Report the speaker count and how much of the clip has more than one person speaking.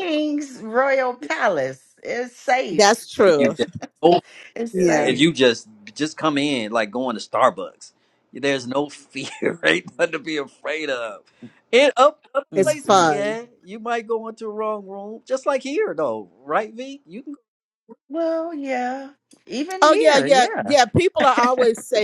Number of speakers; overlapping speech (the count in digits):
3, about 15%